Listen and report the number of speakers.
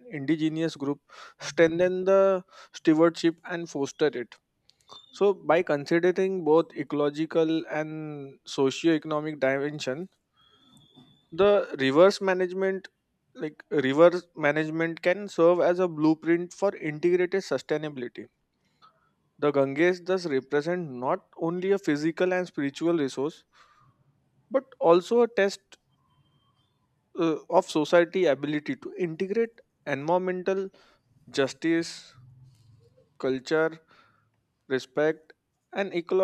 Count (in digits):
1